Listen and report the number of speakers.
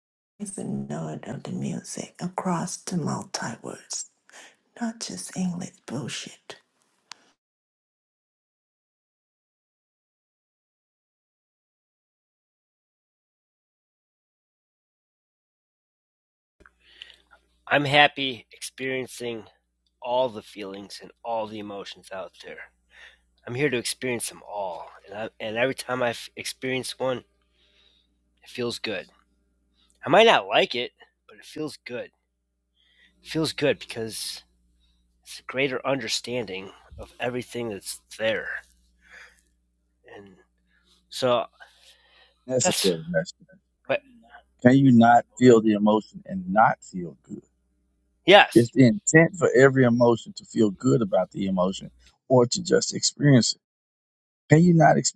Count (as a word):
three